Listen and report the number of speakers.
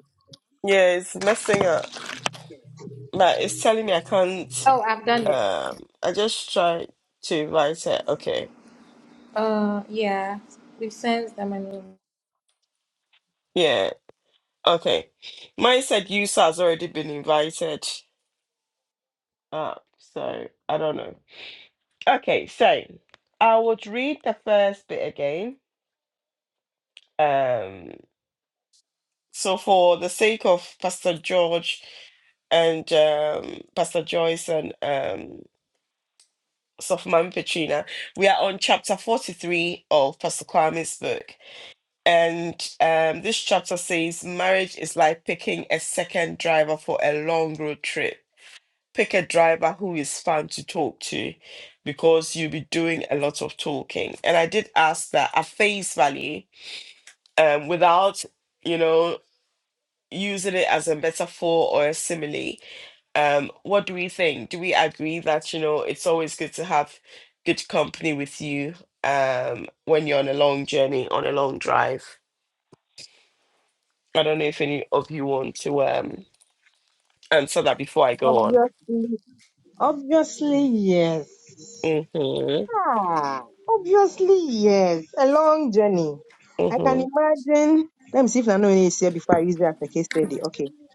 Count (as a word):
three